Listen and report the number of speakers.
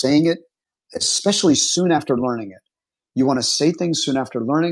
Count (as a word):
one